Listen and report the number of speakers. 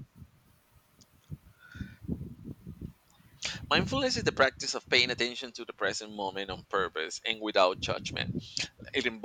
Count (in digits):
1